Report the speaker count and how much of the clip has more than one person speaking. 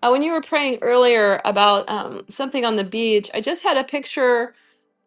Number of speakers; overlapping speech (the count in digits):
1, no overlap